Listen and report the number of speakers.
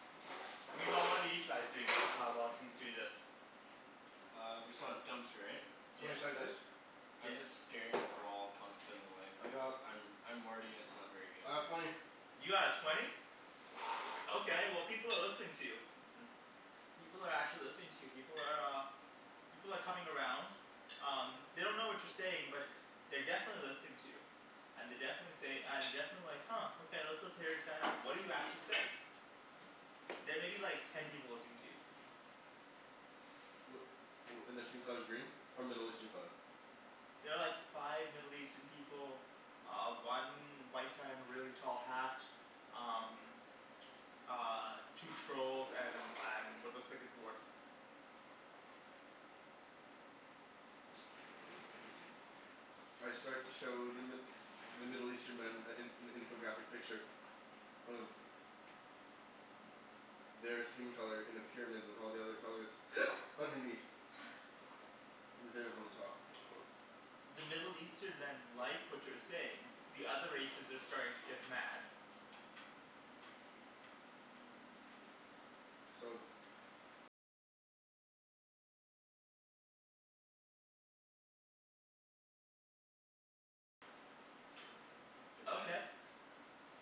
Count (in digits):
3